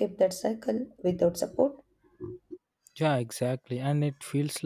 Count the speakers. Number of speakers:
two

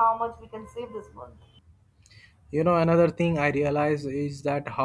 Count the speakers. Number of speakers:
two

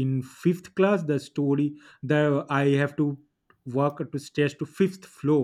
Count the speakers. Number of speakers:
one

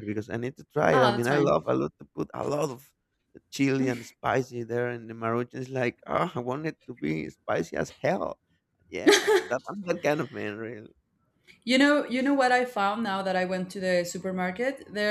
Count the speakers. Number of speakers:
two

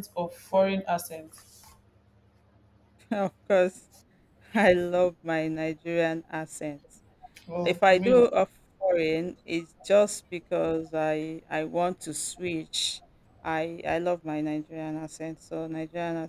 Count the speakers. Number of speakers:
two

